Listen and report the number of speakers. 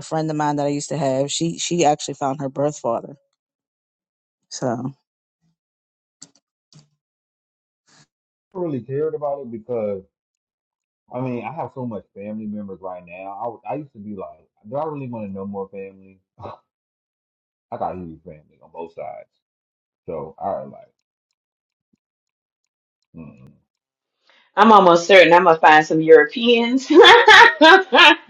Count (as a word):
three